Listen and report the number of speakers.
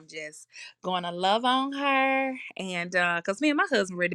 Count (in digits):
1